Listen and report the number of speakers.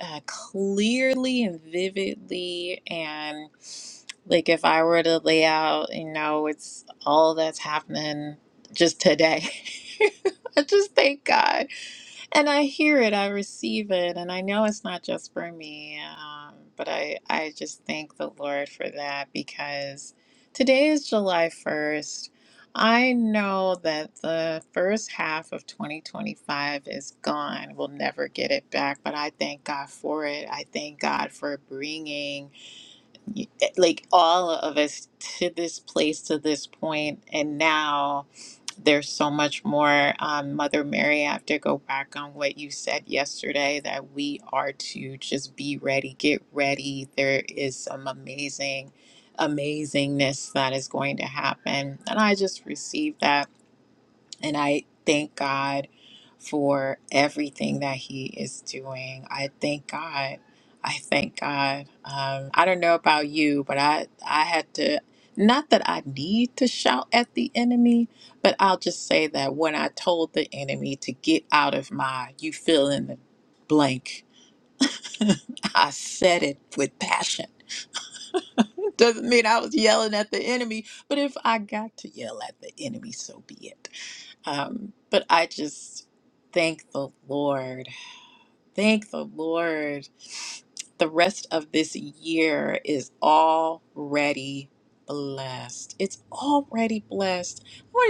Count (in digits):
1